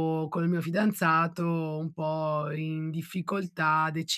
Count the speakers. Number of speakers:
one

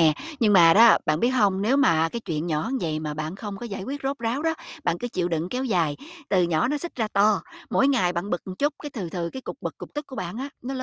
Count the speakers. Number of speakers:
one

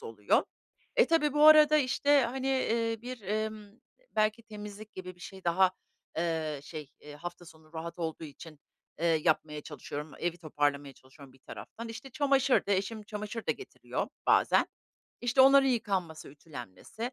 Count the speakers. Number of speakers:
one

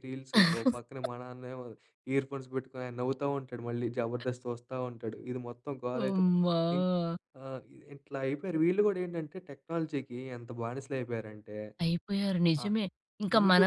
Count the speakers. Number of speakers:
two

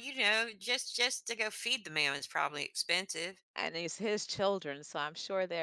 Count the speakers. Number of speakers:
two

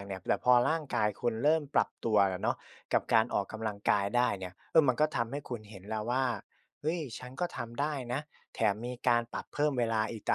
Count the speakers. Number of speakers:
one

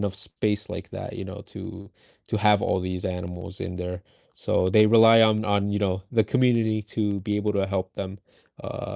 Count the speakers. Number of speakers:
one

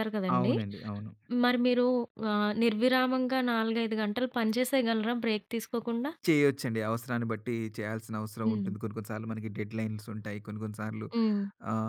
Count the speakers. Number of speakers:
two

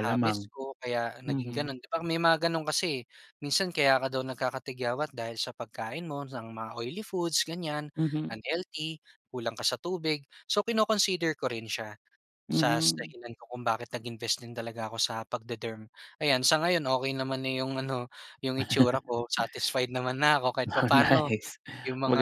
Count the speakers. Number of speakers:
two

